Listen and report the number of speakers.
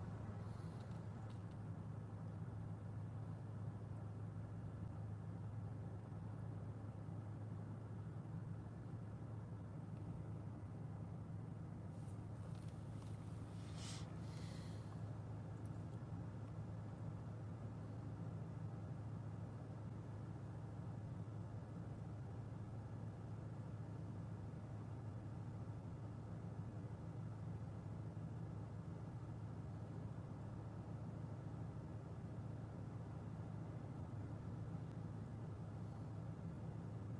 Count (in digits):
0